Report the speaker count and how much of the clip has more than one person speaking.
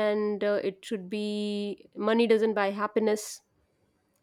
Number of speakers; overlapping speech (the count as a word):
one, no overlap